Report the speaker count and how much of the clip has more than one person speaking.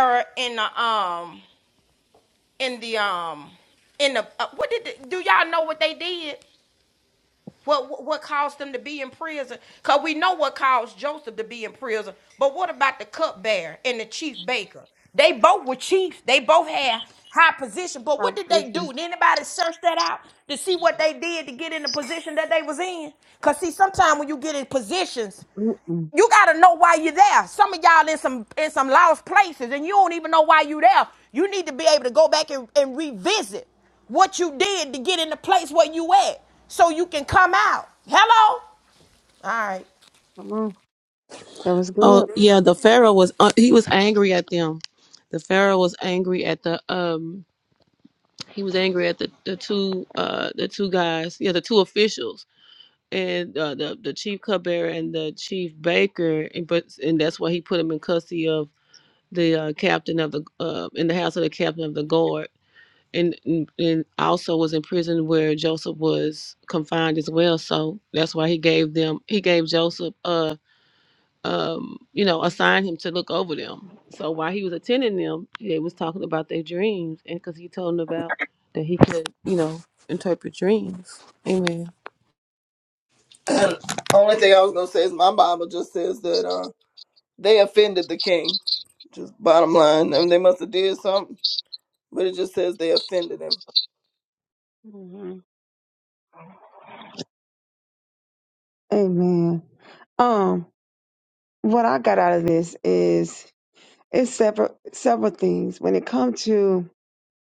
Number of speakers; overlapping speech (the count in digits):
4, about 1%